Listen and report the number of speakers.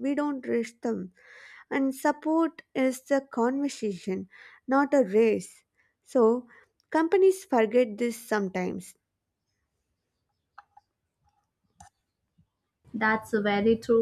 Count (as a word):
two